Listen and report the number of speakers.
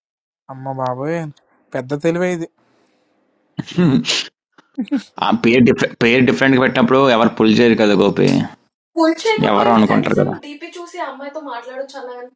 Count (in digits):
3